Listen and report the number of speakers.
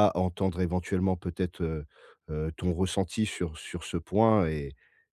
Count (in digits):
1